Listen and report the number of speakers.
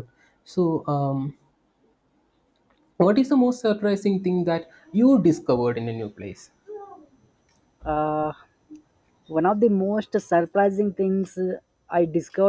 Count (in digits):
2